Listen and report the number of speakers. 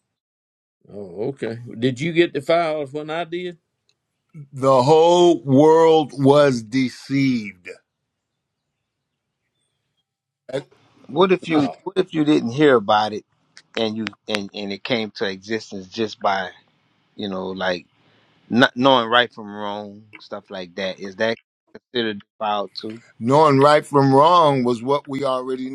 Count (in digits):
3